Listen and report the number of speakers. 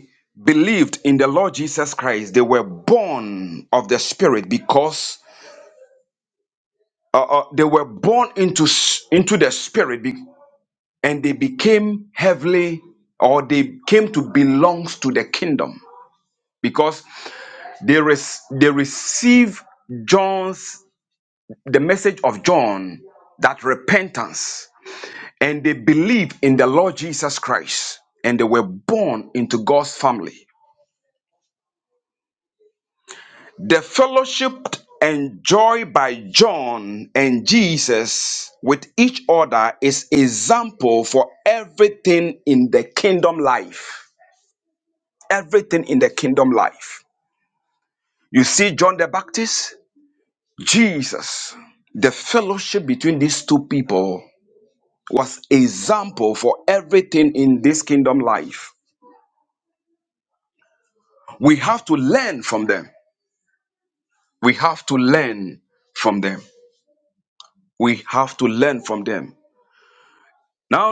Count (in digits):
1